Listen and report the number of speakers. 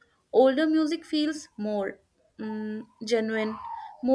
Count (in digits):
1